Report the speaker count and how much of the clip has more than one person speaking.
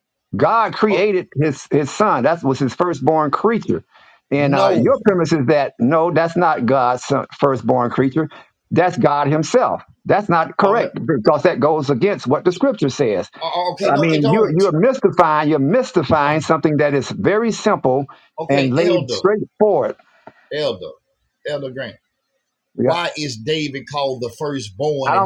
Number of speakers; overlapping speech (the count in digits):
2, about 12%